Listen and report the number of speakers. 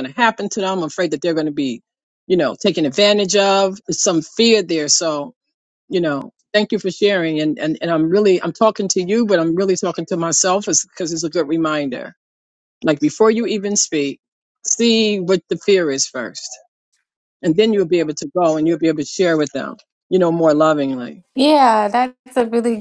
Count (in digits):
2